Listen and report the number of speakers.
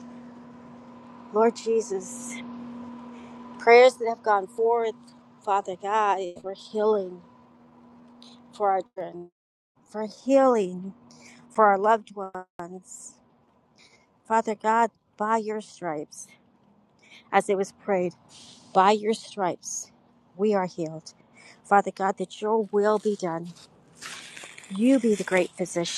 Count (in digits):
1